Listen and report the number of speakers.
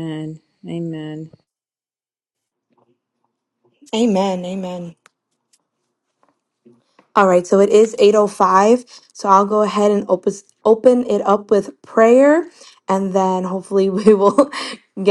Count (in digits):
2